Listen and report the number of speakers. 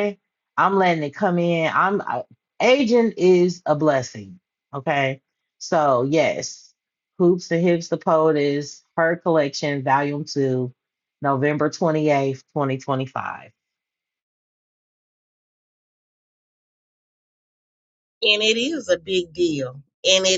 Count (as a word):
two